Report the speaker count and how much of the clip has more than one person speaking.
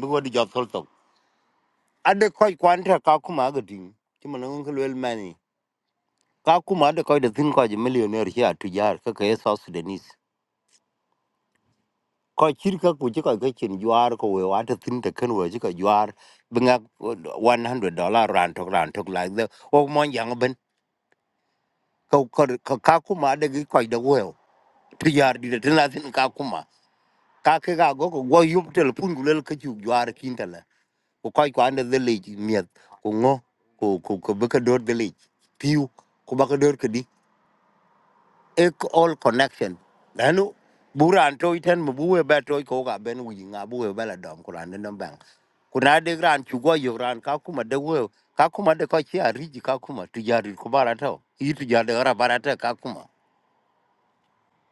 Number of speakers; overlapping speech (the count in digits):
1, no overlap